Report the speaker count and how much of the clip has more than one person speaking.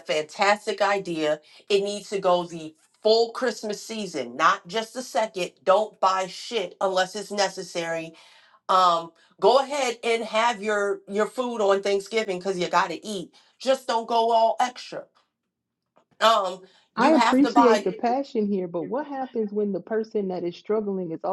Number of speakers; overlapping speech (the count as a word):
two, about 4%